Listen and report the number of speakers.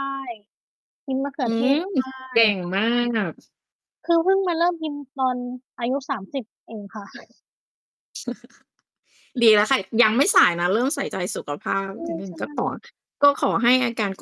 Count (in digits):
2